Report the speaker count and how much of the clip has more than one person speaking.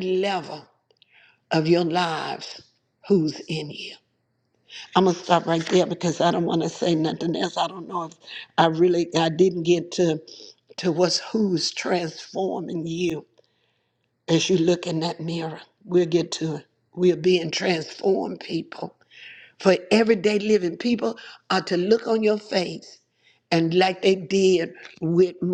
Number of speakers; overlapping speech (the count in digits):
1, no overlap